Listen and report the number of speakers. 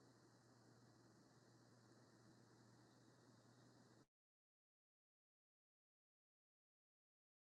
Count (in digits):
0